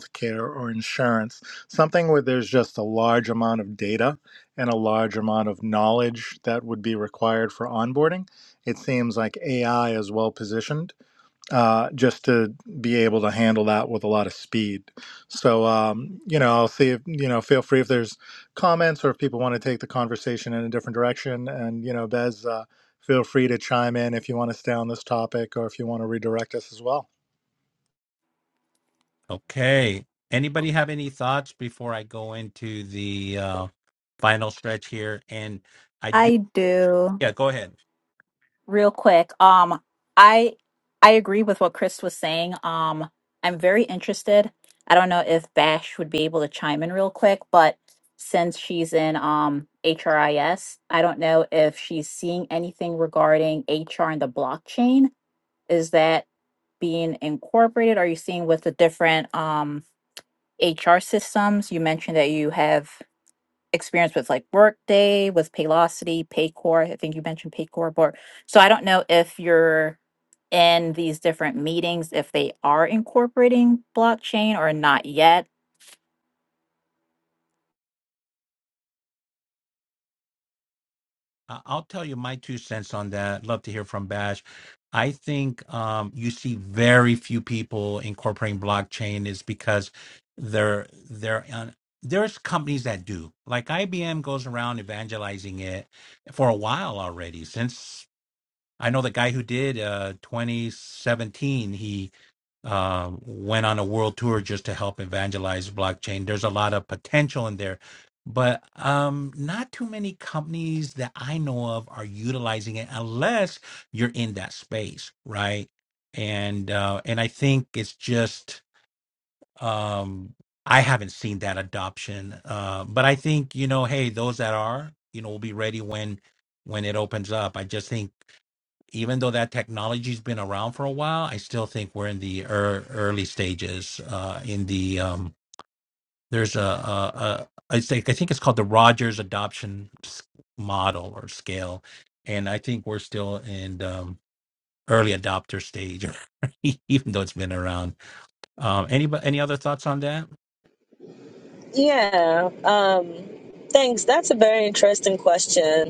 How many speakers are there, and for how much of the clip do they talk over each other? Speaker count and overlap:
4, under 1%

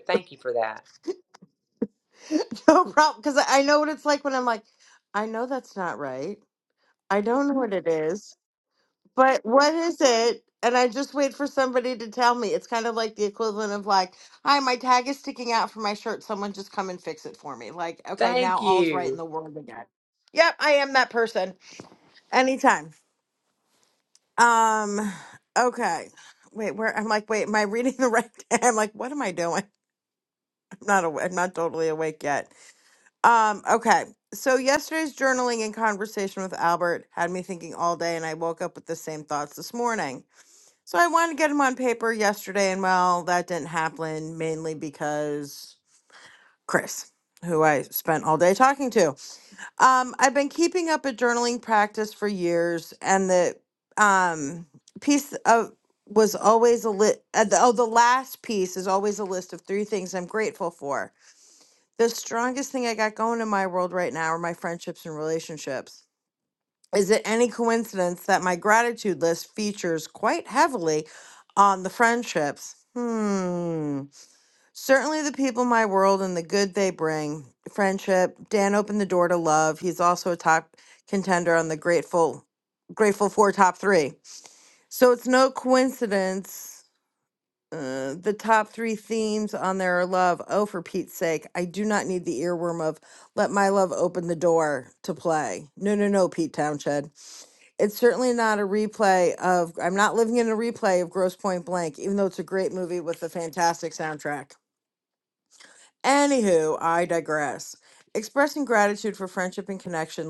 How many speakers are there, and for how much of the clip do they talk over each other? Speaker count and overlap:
2, about 1%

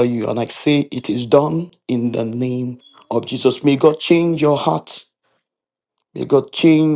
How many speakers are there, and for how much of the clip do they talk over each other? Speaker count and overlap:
1, no overlap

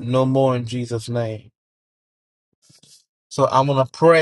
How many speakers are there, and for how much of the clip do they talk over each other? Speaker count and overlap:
1, no overlap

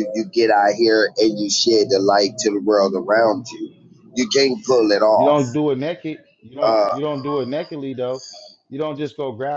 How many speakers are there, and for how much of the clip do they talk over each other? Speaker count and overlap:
2, about 6%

